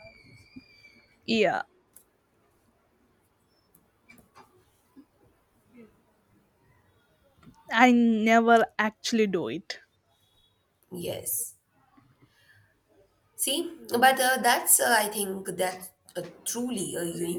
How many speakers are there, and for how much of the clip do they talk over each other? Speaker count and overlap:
two, no overlap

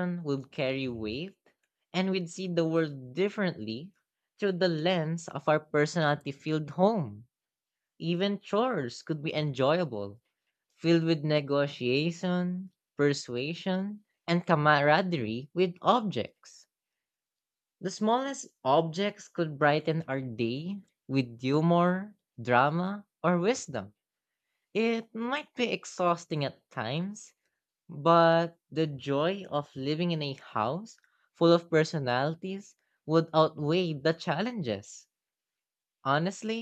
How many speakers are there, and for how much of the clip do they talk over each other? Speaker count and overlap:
one, no overlap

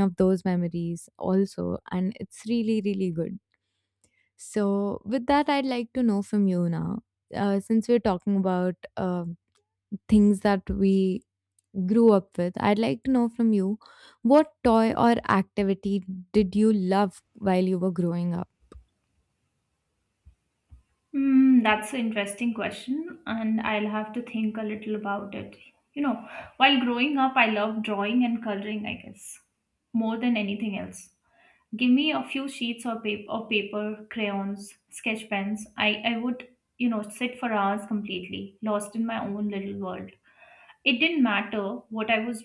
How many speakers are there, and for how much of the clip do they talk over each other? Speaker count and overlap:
two, no overlap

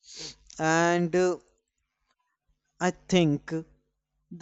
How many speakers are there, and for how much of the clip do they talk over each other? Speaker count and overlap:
one, no overlap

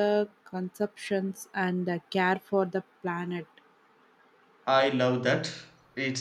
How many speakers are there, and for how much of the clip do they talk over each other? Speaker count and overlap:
two, no overlap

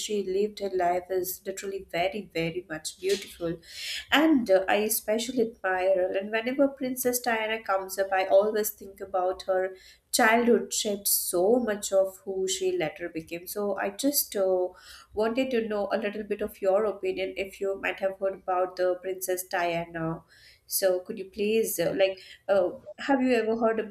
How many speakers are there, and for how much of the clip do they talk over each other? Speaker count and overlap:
one, no overlap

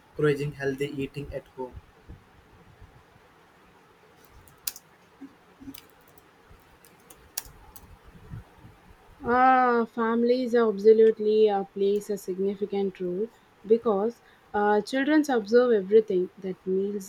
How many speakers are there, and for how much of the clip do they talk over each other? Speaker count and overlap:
two, no overlap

